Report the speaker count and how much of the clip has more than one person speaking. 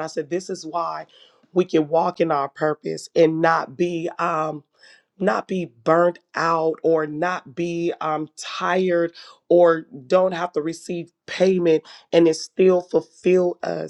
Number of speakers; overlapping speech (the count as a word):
one, no overlap